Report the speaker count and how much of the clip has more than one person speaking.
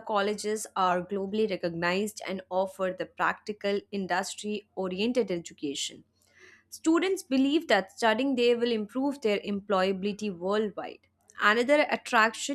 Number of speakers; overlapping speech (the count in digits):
1, no overlap